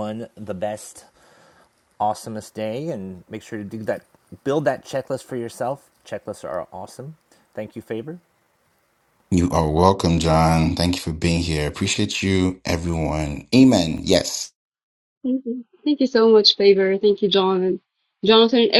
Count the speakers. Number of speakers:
3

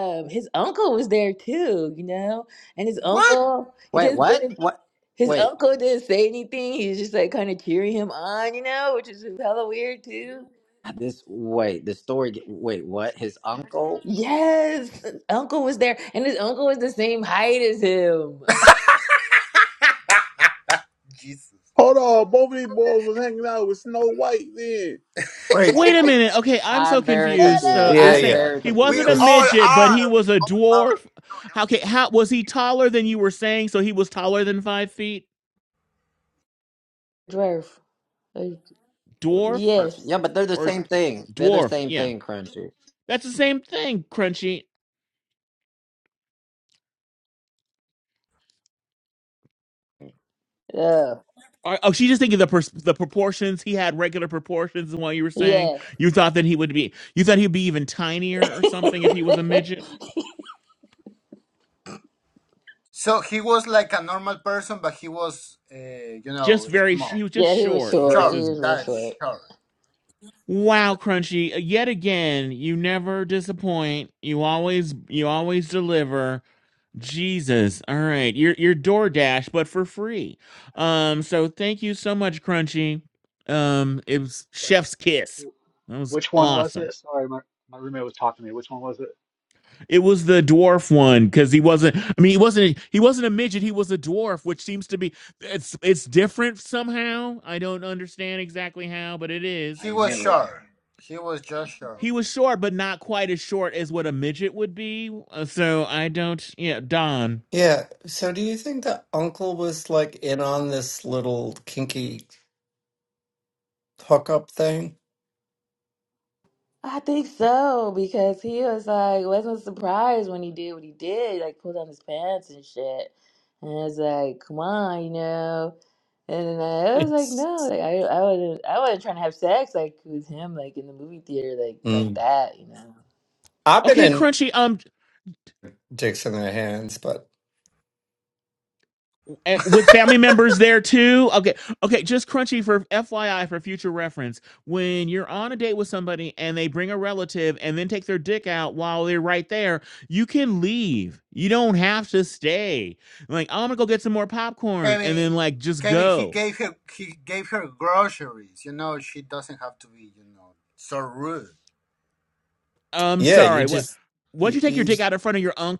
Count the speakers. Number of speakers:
7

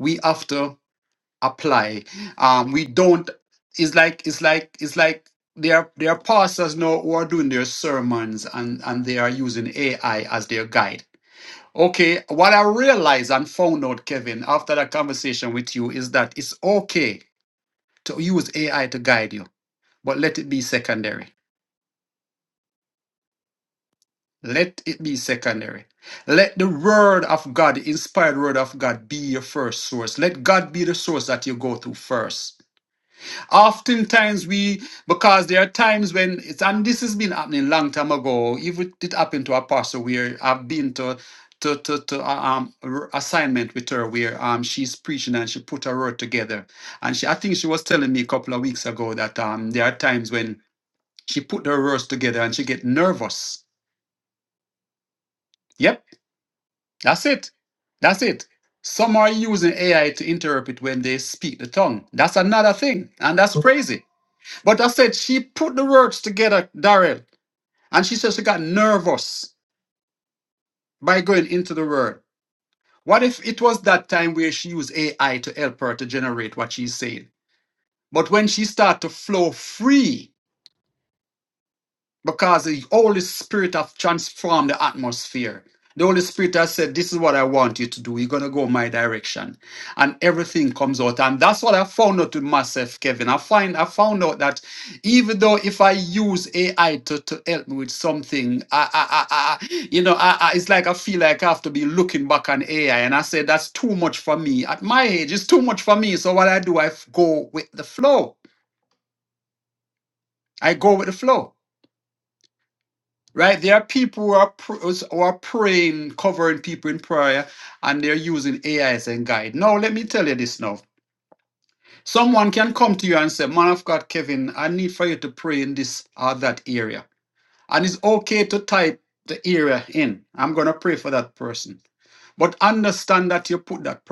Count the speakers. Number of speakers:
1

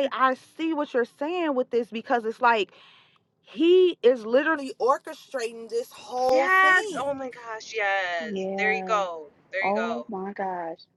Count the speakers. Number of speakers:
3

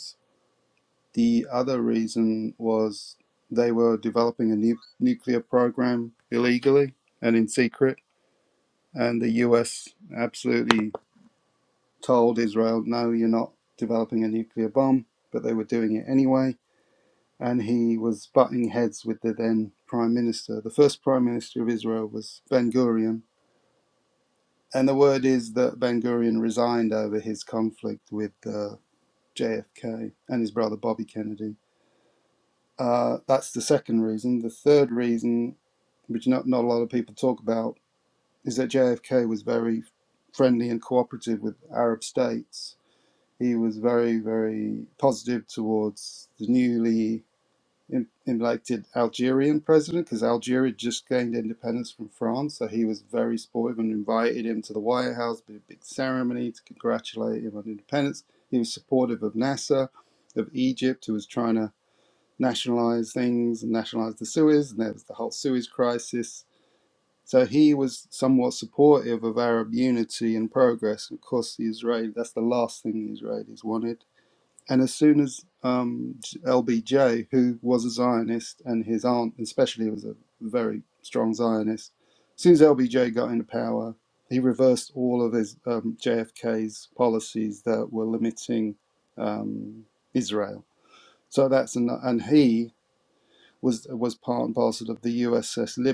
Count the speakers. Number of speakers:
1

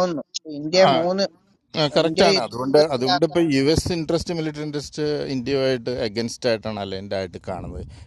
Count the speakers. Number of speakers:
2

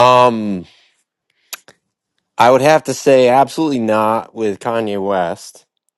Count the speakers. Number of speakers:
1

